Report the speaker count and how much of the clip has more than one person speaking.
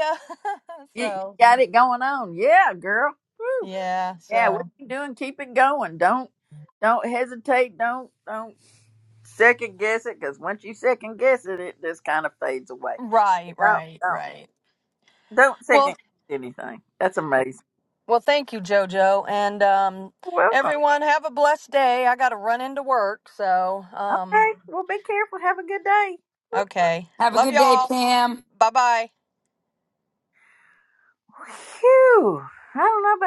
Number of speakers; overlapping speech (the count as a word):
three, about 9%